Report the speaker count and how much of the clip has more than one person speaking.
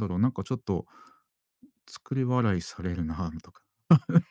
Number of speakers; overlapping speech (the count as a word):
one, no overlap